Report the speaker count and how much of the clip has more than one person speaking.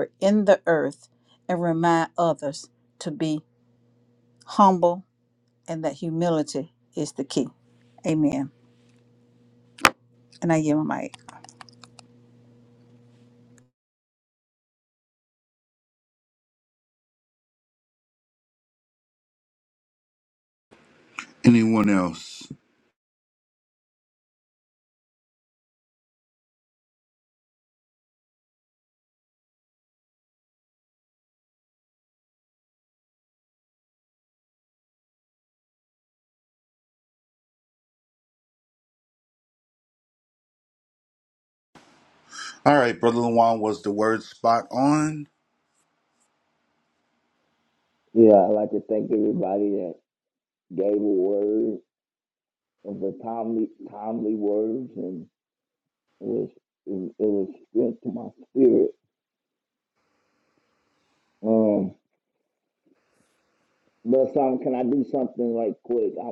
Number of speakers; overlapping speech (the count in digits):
3, no overlap